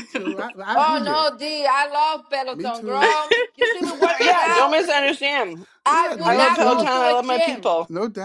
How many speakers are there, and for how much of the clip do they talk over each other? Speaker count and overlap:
3, about 42%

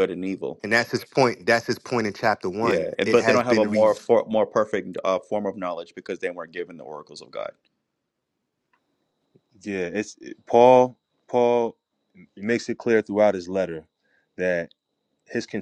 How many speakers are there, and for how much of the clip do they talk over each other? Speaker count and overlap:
3, about 8%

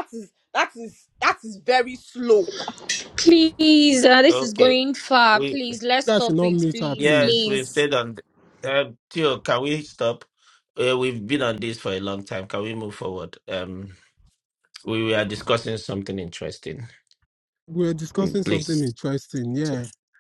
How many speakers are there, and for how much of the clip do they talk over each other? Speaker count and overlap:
4, about 13%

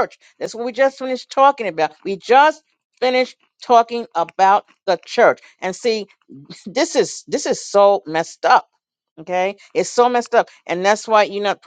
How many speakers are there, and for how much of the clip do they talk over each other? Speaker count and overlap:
1, no overlap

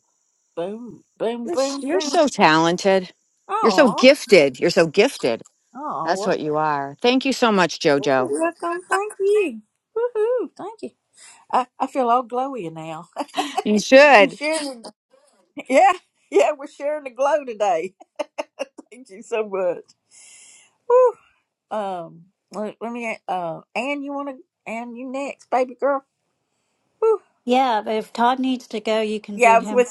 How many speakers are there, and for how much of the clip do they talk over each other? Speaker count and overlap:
3, about 8%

